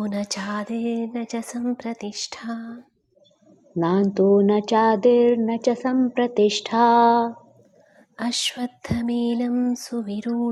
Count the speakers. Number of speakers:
2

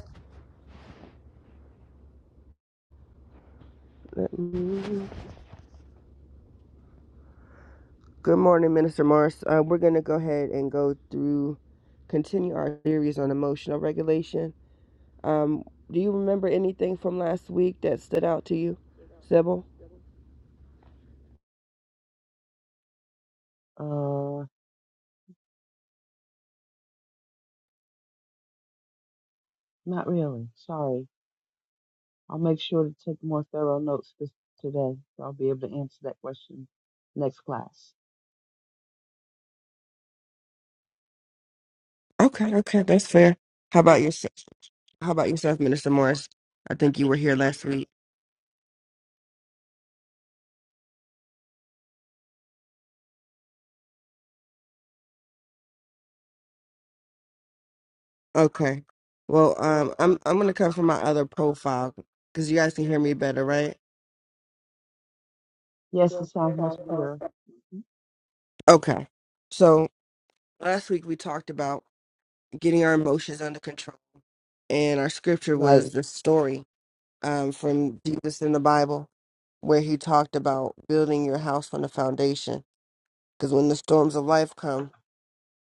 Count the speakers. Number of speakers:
3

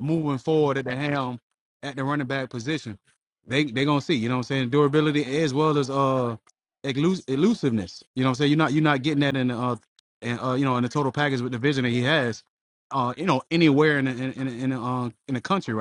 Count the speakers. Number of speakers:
1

